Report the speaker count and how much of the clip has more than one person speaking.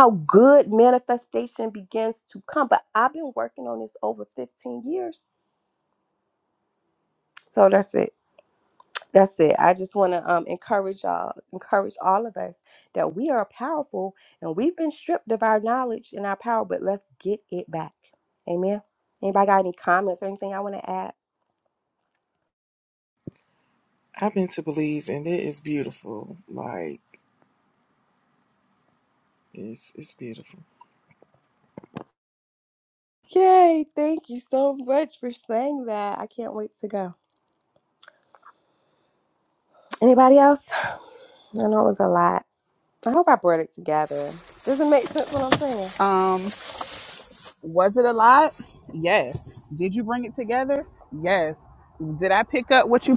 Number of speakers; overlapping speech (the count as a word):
three, no overlap